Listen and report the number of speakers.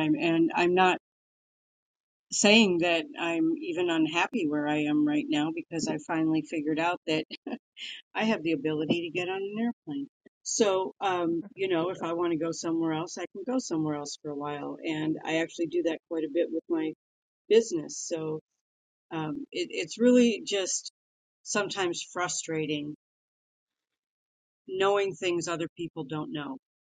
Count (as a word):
one